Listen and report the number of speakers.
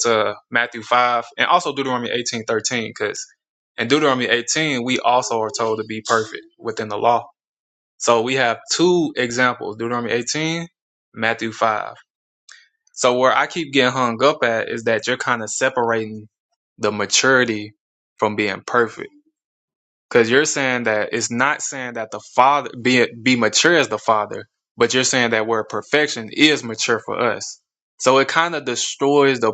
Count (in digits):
1